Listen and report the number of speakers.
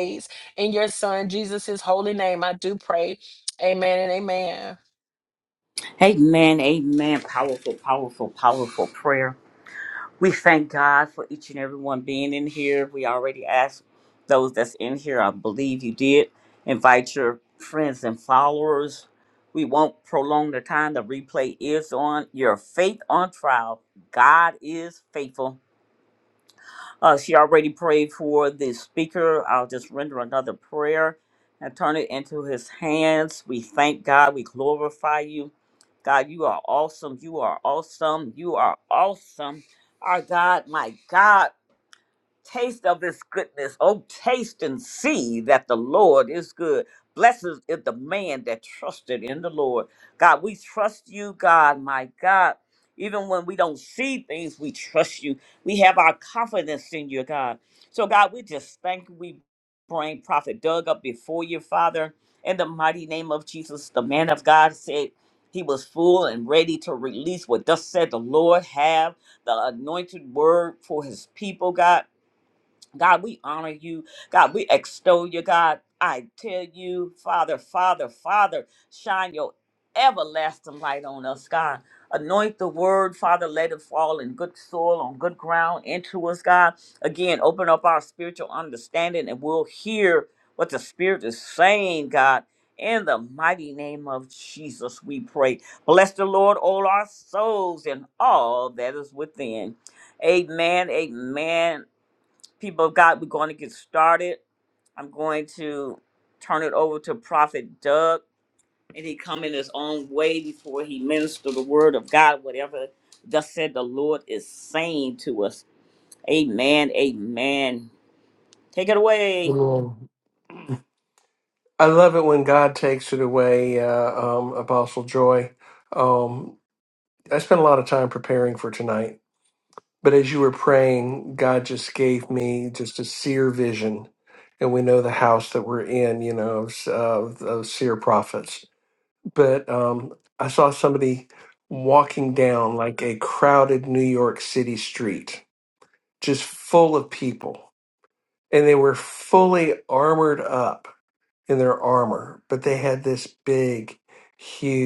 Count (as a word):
three